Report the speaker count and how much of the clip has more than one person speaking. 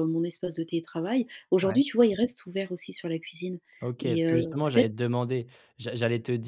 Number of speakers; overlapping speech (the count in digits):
2, about 16%